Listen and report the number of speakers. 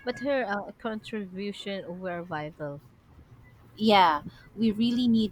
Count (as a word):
two